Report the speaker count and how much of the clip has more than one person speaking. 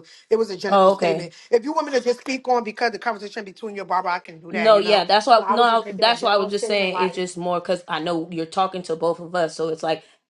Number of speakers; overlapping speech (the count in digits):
2, about 28%